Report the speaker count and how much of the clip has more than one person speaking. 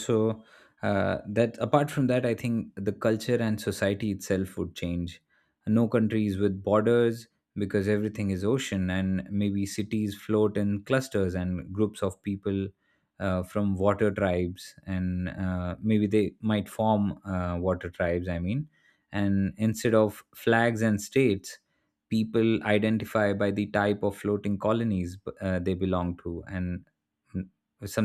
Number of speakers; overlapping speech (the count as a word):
one, no overlap